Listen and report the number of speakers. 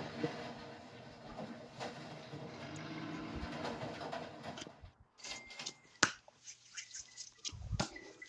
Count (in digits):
0